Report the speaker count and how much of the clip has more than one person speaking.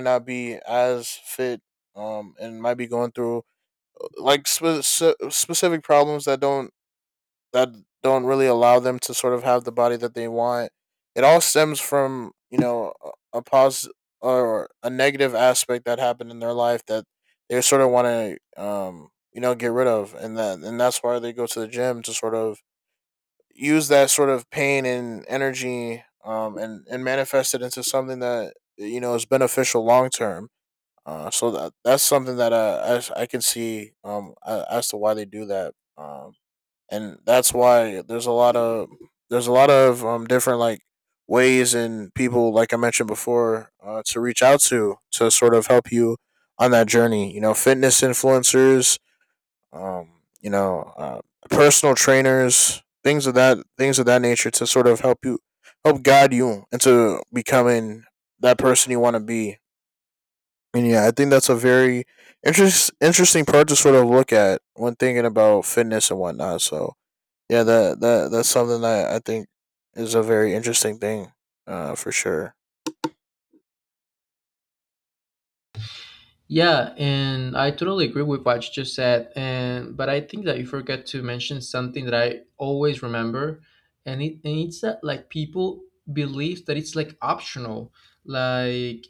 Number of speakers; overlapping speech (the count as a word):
two, no overlap